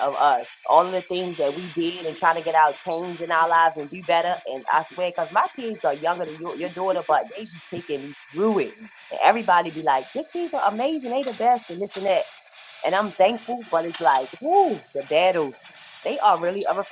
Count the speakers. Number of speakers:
1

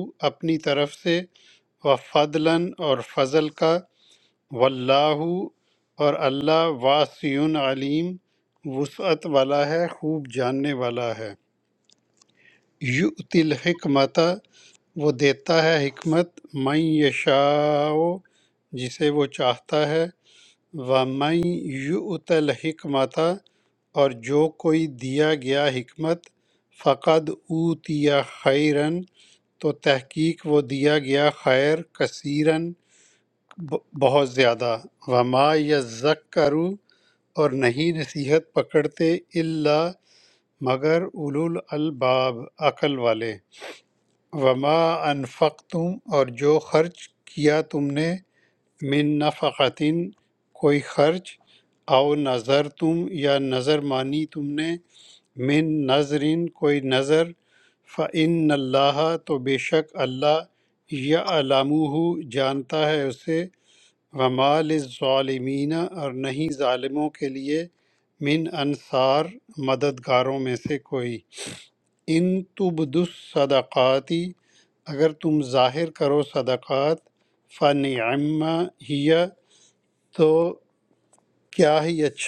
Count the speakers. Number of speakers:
1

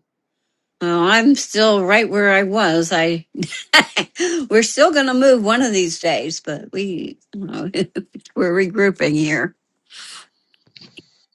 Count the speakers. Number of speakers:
1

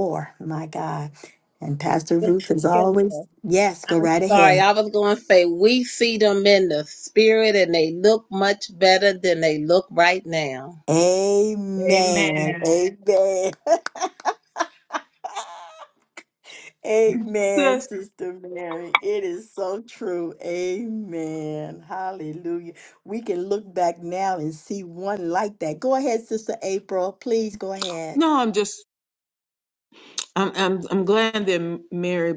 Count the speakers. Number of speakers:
3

